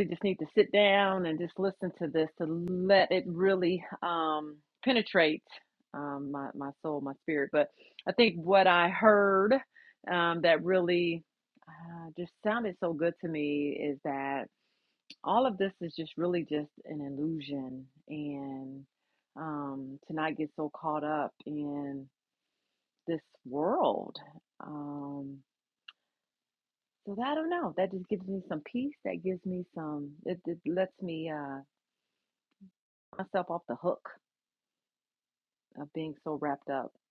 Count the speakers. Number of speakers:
1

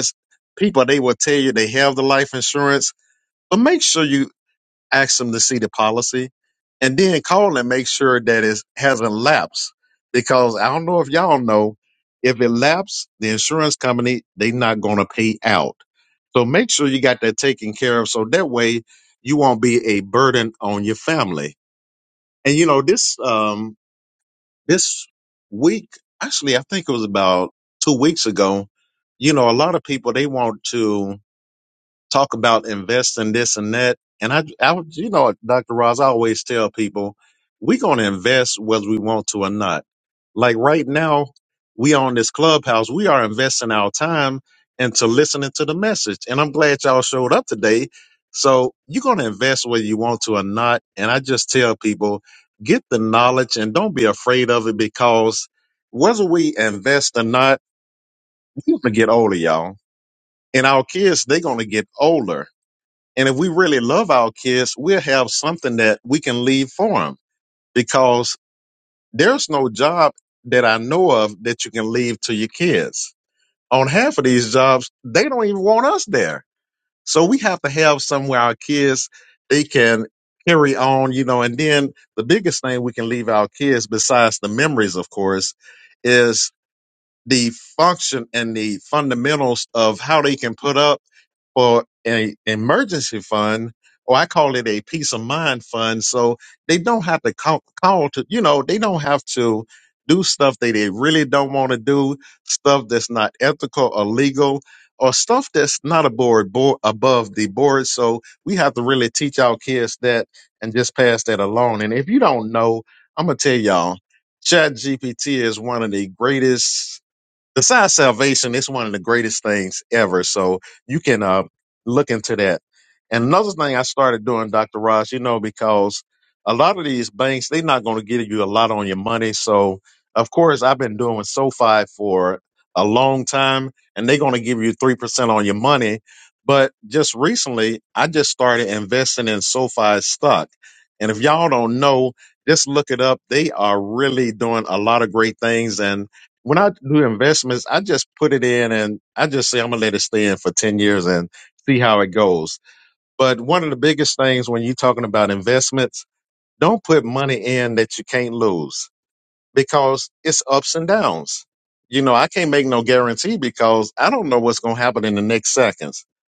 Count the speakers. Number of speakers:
1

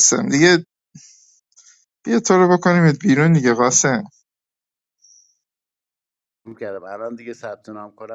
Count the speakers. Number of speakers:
2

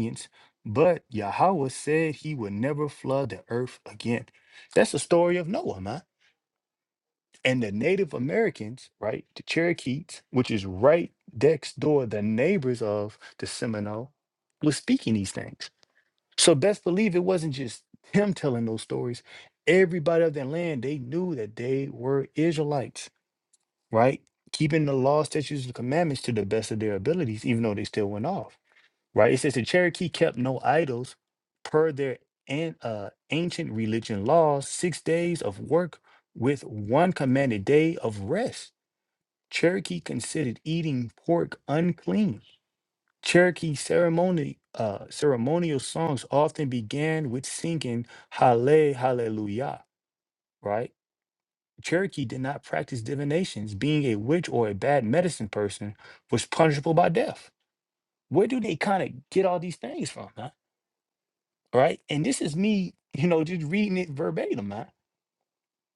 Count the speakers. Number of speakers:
1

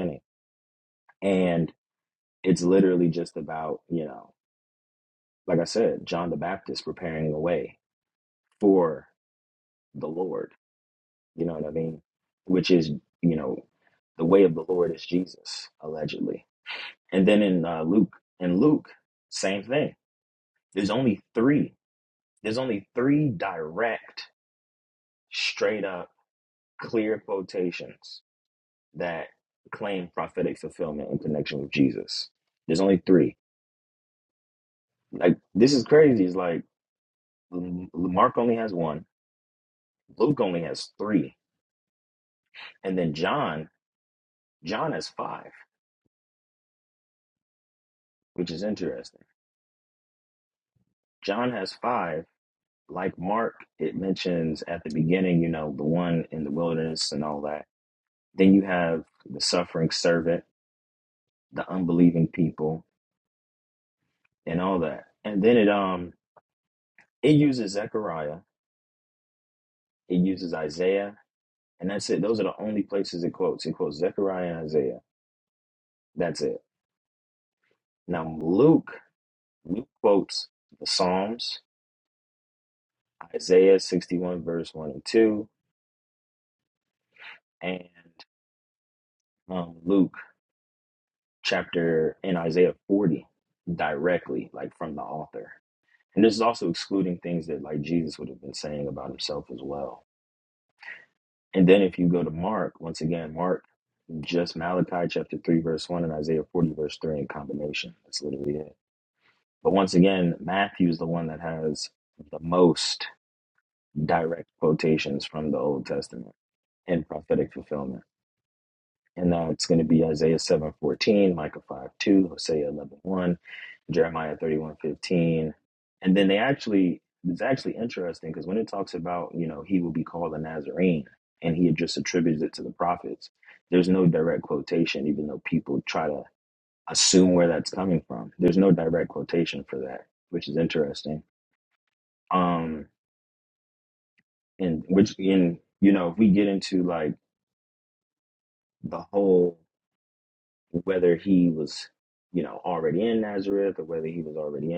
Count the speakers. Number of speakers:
1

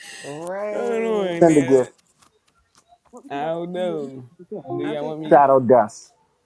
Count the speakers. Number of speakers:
3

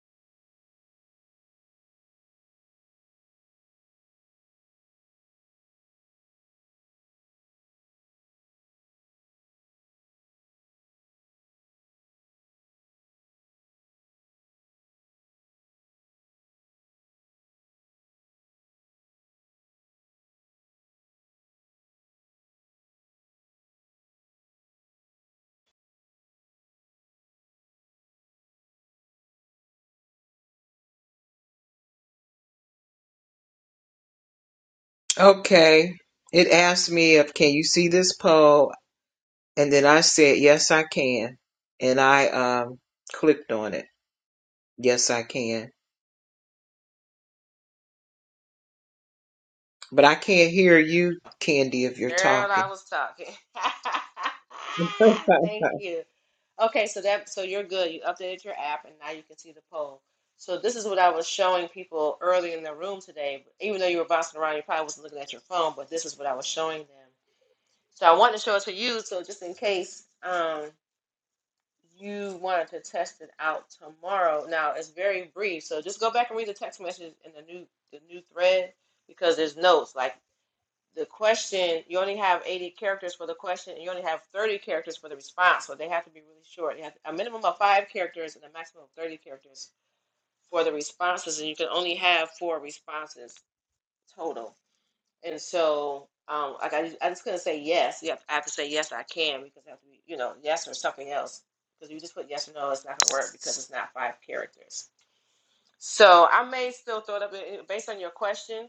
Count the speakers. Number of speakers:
2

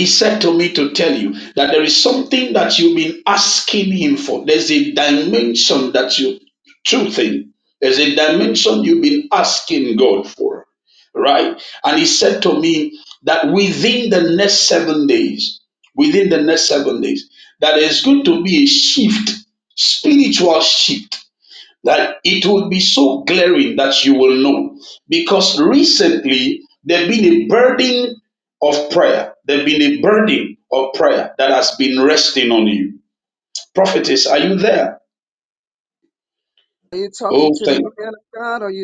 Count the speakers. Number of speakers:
2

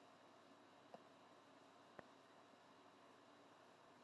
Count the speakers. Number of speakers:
0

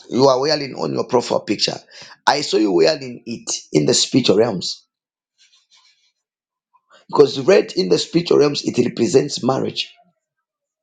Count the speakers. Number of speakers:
1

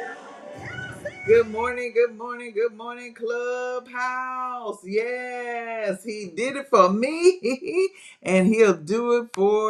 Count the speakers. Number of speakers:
1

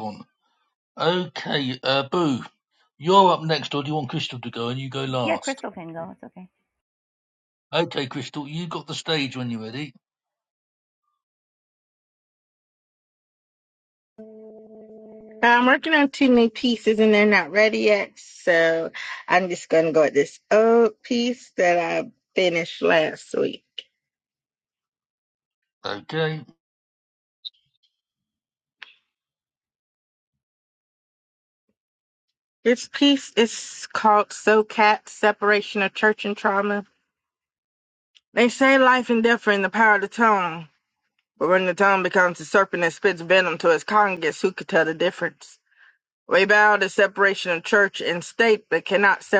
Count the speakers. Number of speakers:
3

